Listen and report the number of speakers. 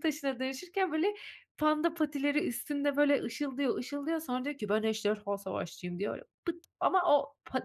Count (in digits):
1